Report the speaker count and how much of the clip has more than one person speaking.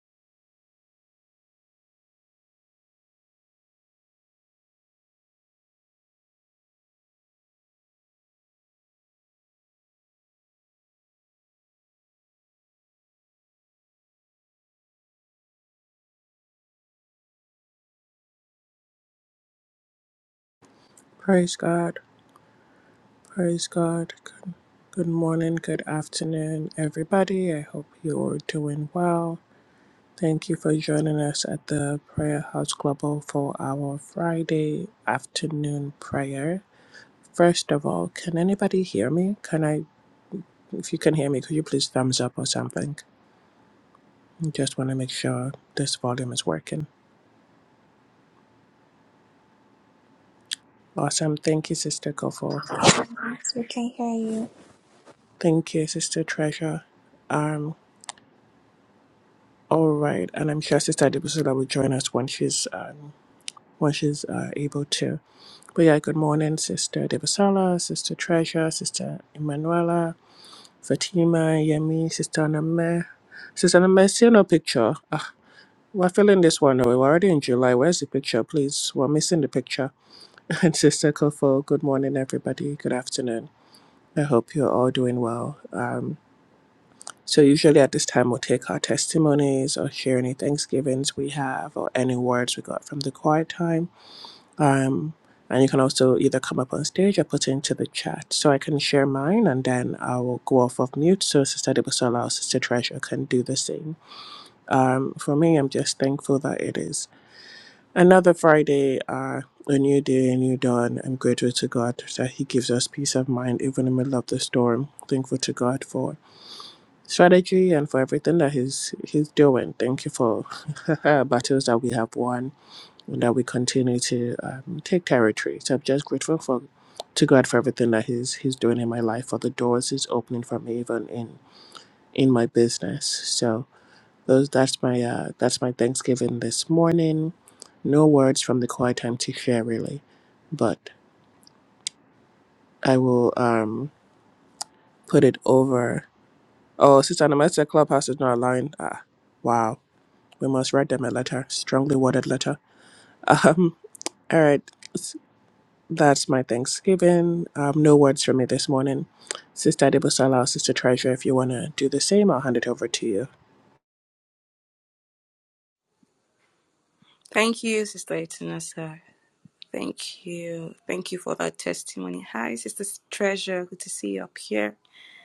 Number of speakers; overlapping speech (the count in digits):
3, no overlap